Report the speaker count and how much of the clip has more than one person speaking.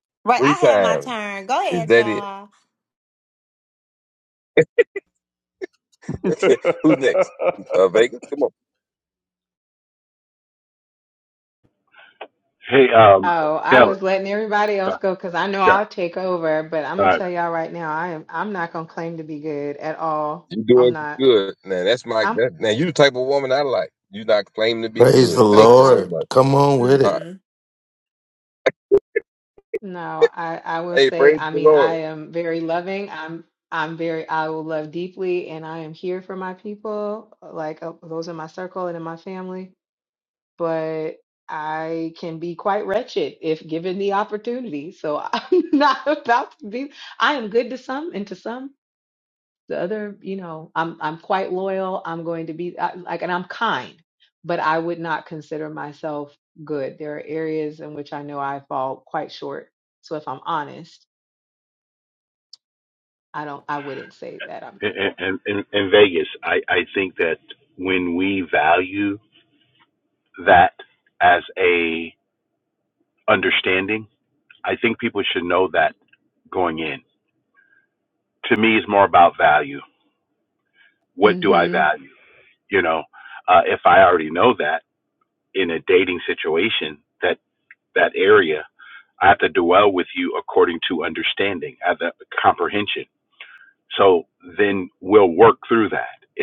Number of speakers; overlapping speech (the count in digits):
5, about 7%